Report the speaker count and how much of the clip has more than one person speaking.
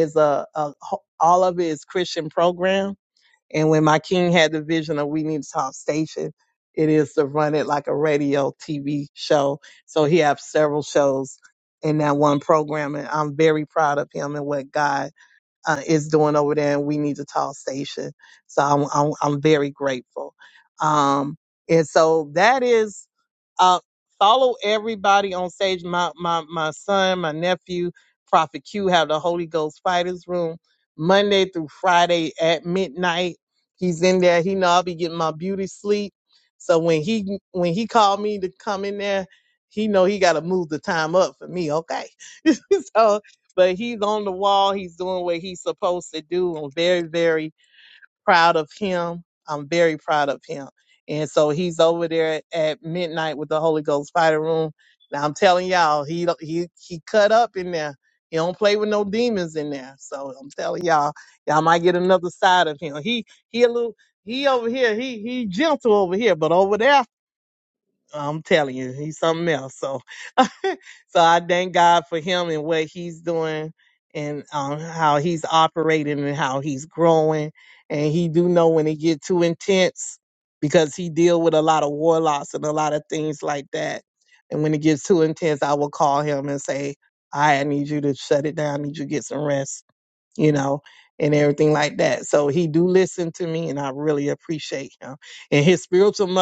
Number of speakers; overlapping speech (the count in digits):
1, no overlap